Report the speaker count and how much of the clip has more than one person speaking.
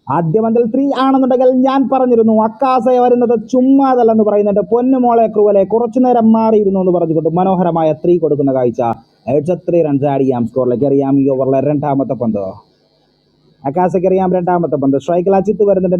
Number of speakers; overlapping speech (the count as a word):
one, no overlap